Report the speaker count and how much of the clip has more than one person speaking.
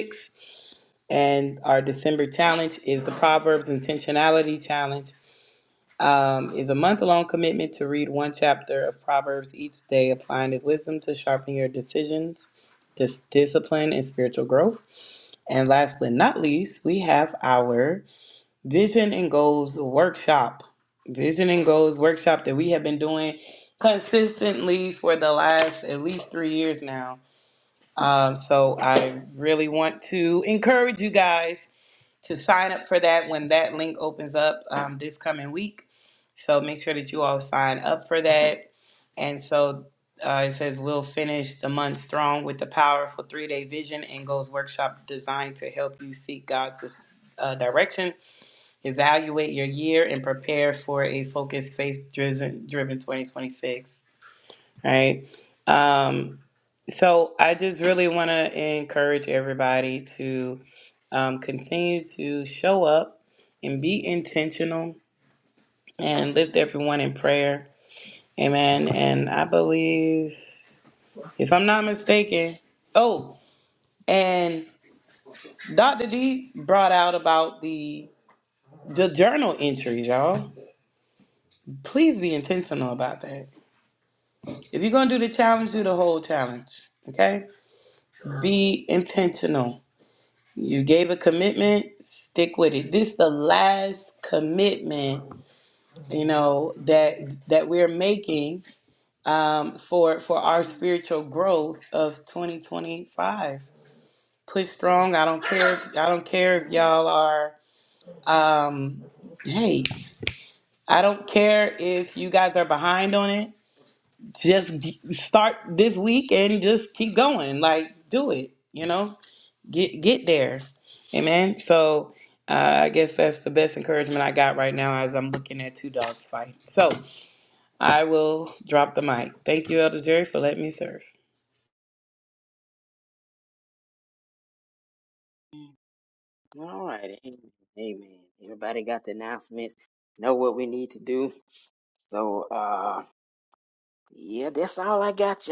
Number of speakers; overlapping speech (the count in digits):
2, no overlap